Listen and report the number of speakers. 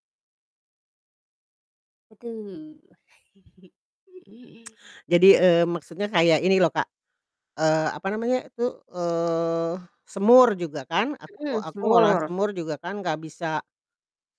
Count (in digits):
2